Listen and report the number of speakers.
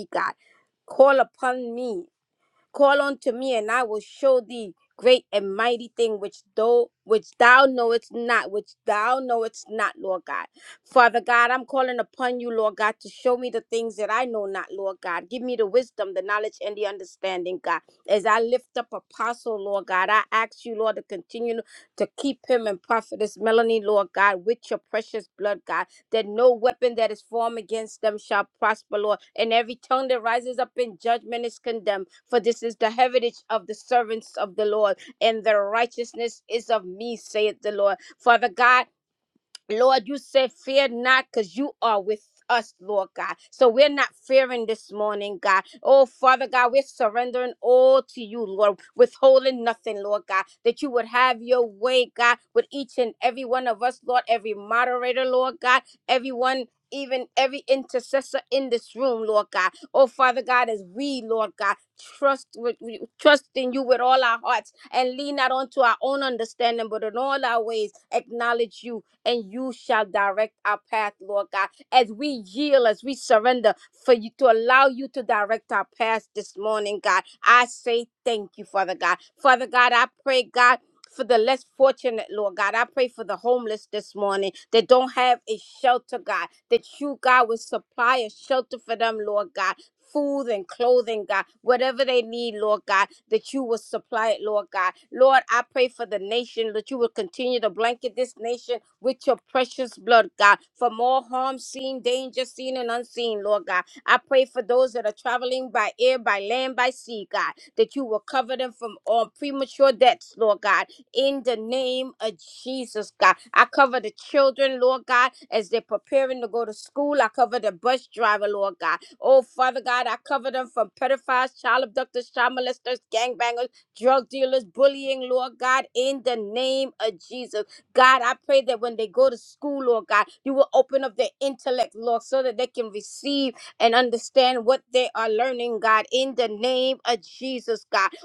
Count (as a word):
one